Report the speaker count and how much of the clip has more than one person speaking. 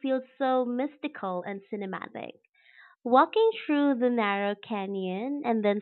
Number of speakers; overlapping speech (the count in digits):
1, no overlap